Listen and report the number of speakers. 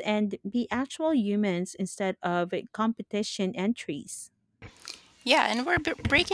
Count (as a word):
two